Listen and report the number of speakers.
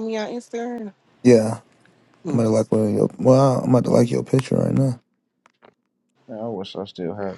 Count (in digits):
3